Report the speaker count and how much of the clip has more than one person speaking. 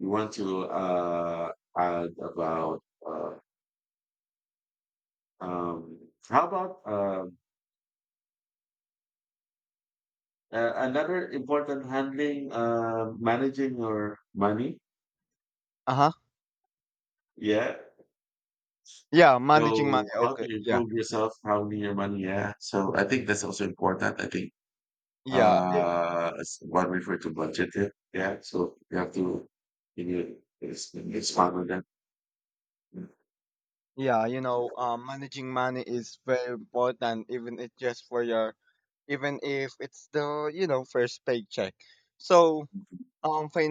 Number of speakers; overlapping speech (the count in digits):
2, about 4%